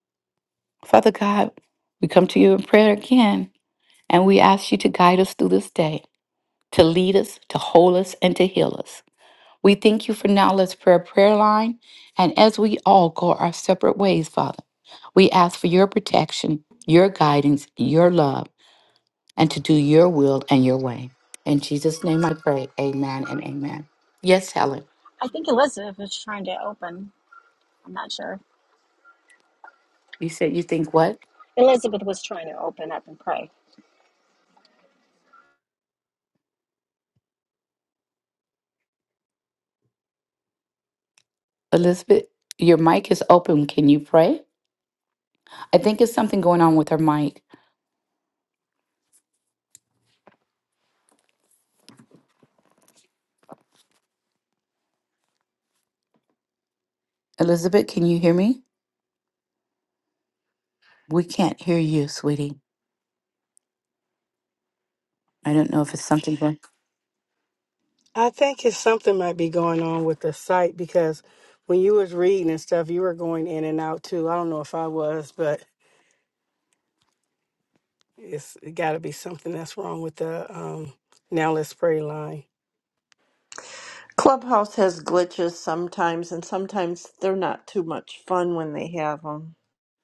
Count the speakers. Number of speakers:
4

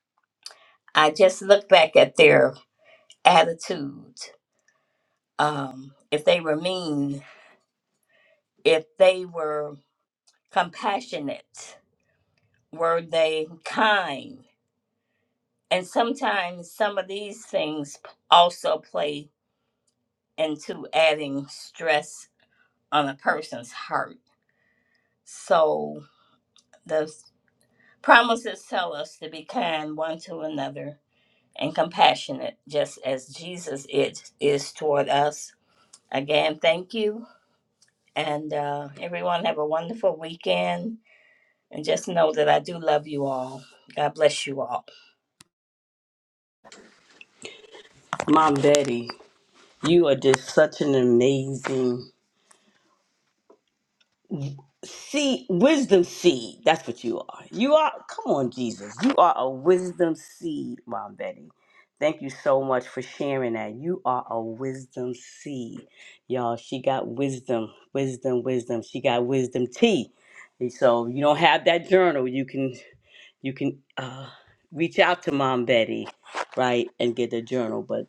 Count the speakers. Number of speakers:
2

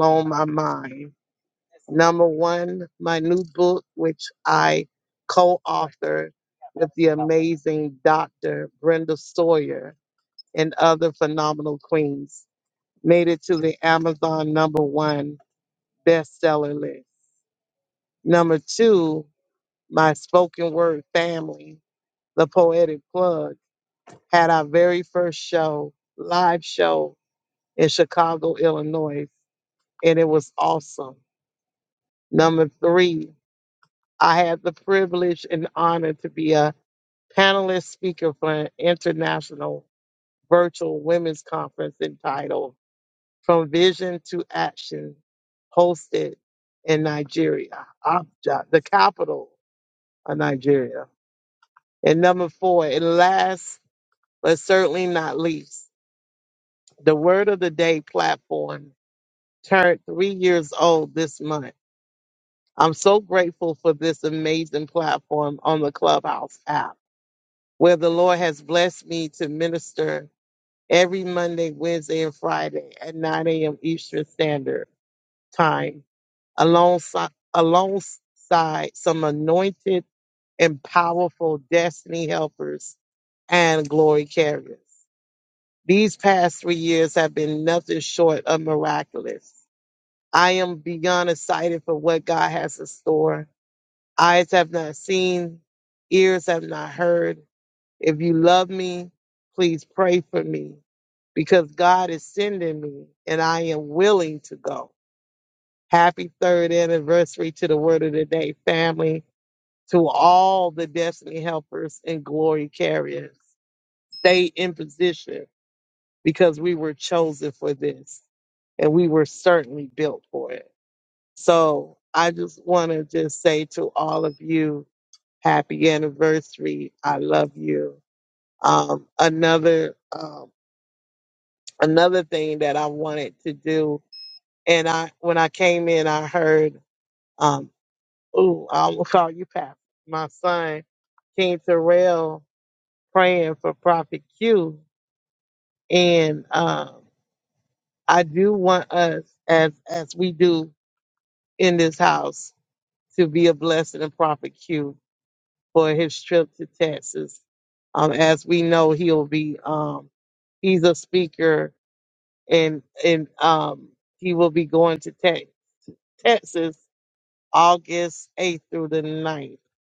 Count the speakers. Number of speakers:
1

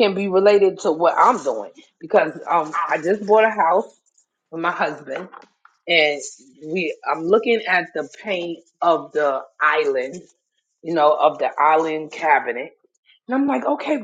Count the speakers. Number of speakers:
1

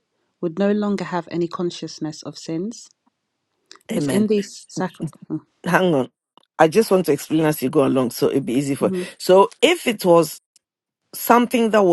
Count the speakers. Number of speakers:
2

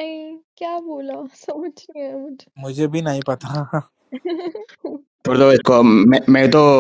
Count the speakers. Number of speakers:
3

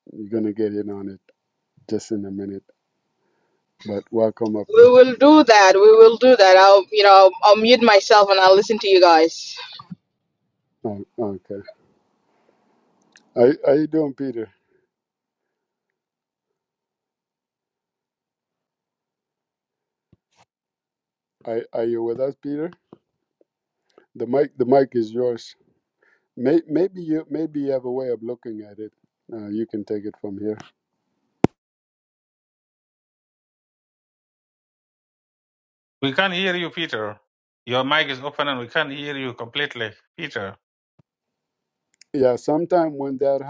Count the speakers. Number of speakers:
3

